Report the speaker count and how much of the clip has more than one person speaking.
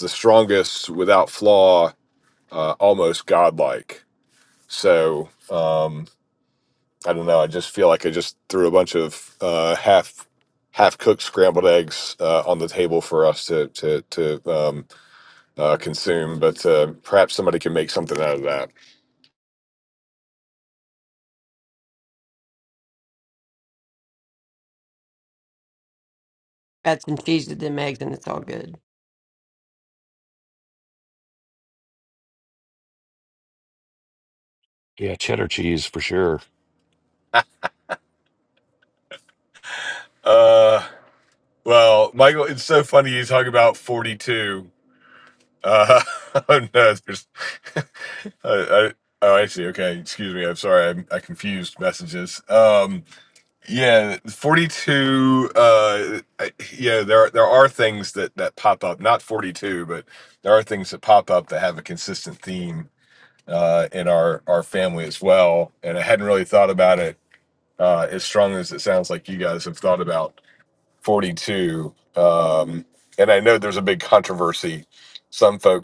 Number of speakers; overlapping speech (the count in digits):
3, no overlap